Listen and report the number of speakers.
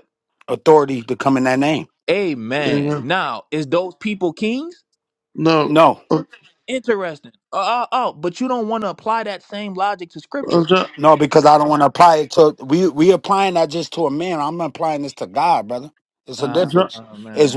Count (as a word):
three